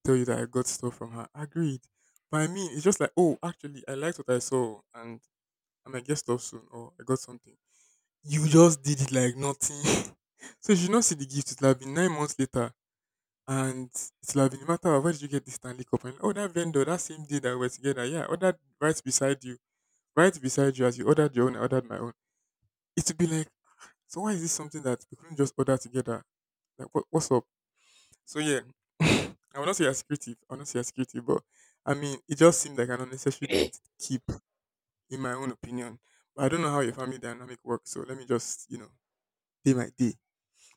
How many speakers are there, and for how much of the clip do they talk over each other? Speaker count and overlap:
1, no overlap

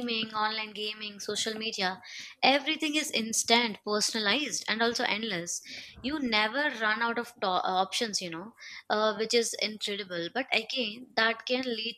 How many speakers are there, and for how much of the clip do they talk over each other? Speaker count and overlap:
1, no overlap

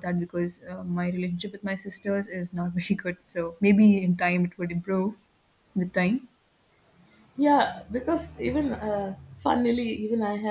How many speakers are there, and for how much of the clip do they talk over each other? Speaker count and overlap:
2, no overlap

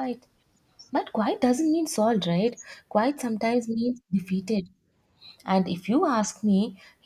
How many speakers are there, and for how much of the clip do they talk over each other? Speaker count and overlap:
1, no overlap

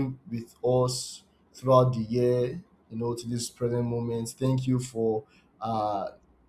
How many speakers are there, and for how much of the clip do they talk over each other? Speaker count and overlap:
1, no overlap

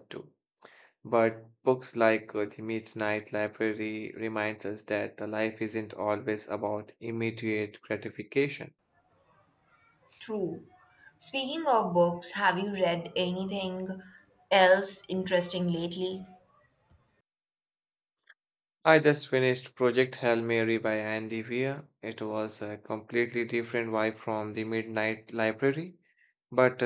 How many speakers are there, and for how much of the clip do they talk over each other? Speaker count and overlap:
2, no overlap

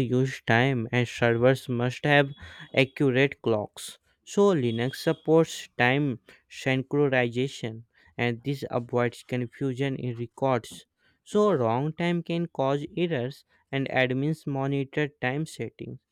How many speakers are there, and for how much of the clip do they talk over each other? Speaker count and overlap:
1, no overlap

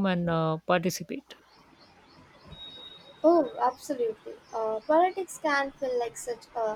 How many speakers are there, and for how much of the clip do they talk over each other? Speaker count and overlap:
2, no overlap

